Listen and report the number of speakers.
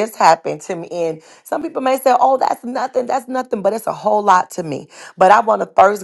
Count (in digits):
1